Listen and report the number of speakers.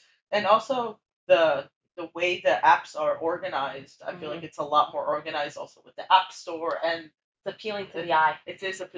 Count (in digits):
2